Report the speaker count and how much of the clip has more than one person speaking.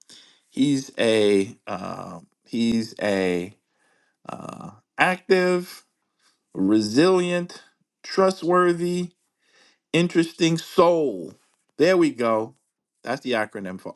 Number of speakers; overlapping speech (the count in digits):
1, no overlap